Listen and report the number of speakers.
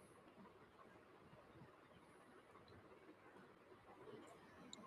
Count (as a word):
zero